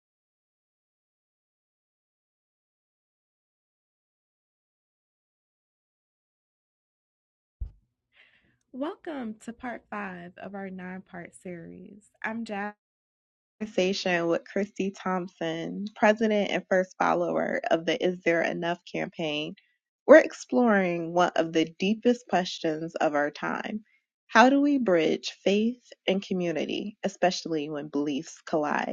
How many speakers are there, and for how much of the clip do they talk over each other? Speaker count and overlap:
1, no overlap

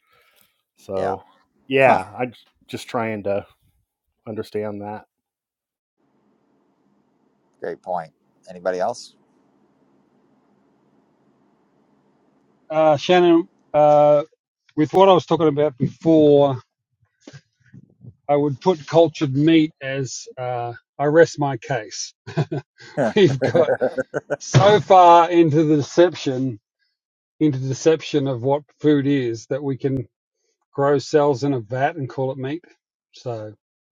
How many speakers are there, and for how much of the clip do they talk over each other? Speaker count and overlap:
3, about 1%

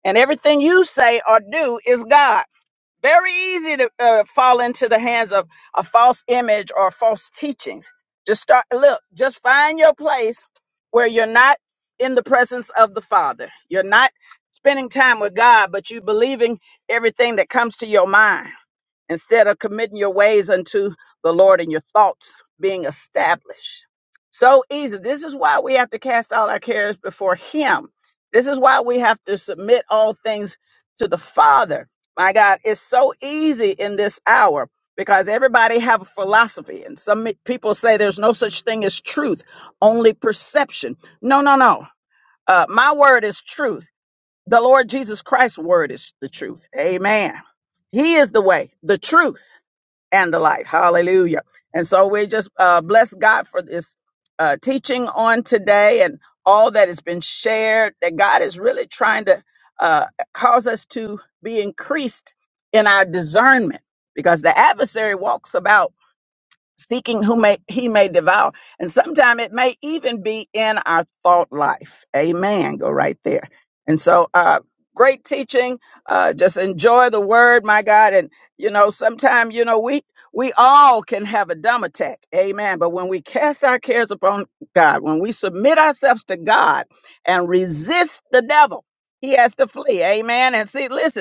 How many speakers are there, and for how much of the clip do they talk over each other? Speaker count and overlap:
1, no overlap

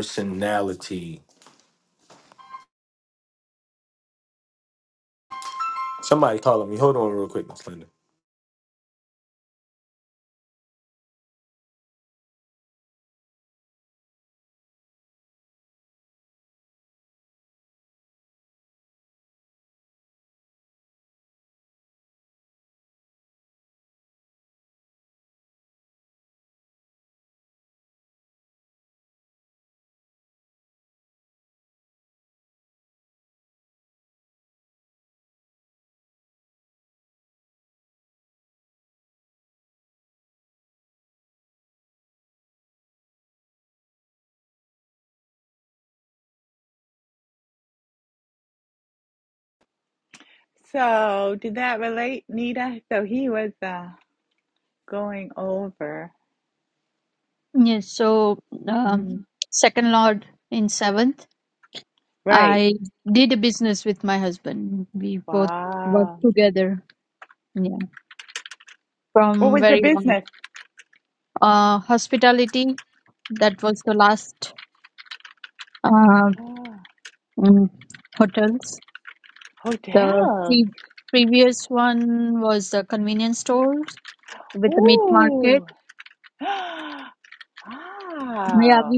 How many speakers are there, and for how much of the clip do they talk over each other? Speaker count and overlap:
3, about 4%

